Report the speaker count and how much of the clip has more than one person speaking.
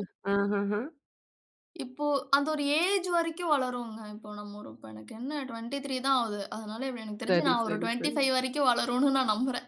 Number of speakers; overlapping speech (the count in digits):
2, about 10%